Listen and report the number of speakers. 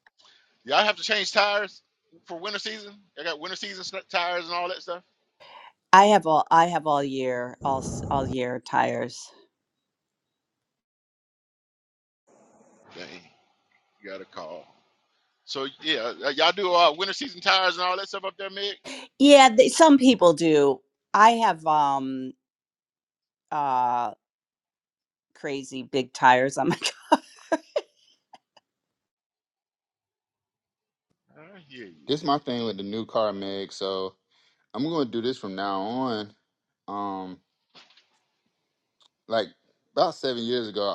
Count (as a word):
three